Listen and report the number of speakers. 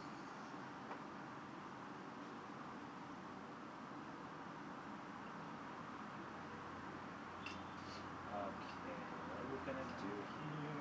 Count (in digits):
1